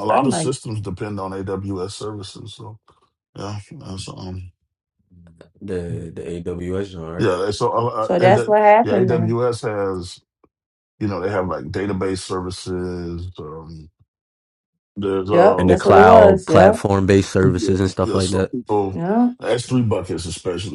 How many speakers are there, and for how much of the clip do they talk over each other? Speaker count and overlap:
three, about 19%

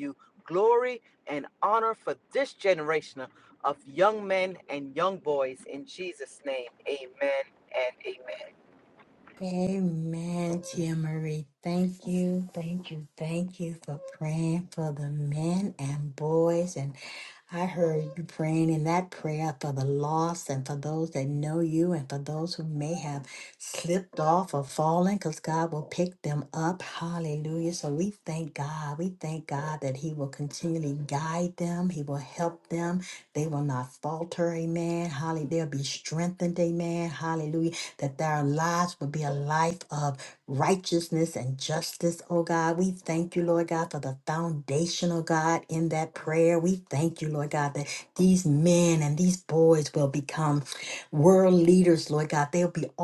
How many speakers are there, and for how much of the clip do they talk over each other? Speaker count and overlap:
two, no overlap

